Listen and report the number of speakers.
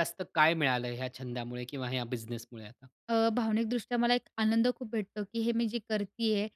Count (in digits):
2